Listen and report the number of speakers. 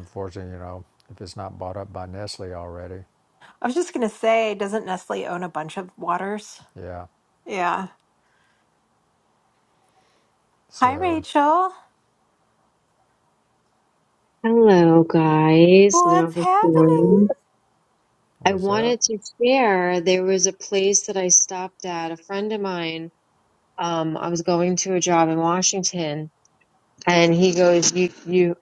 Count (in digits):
3